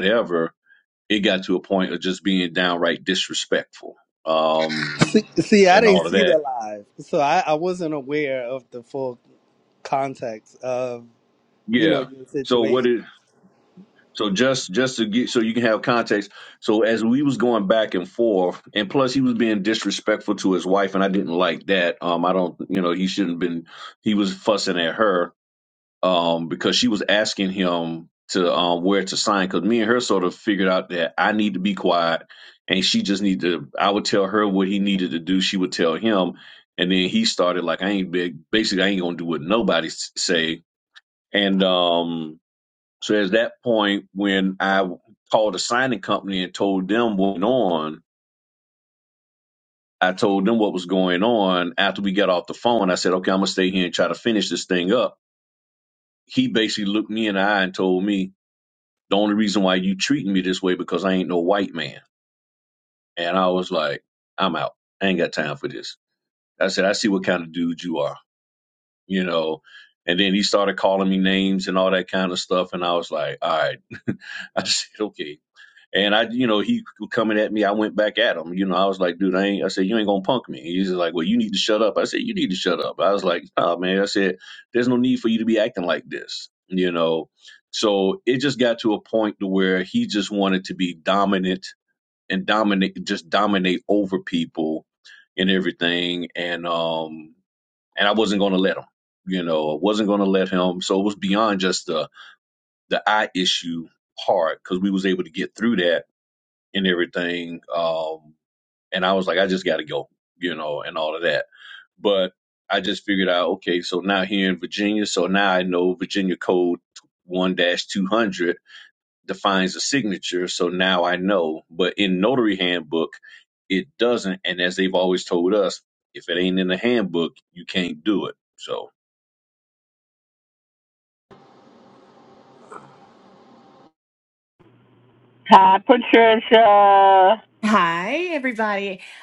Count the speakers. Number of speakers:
4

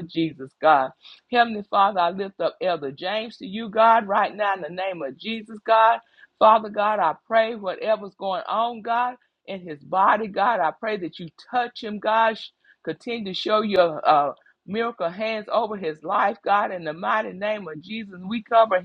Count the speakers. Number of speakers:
1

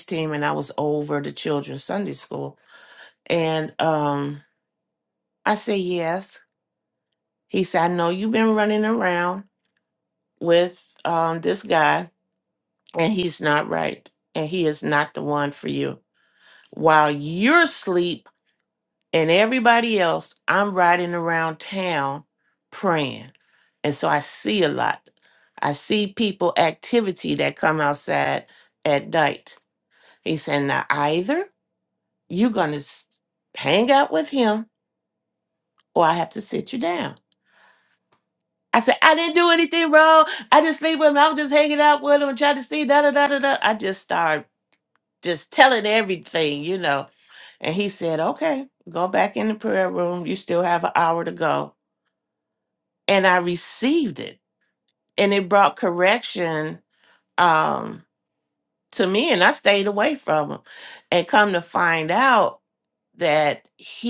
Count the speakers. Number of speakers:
1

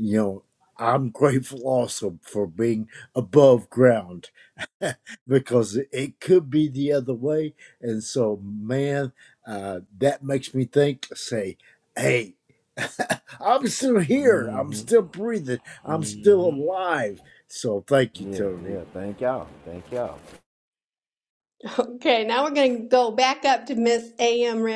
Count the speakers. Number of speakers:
3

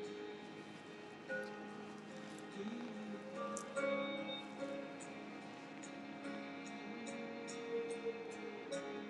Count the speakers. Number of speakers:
0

